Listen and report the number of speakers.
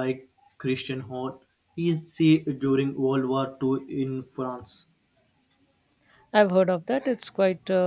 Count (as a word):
two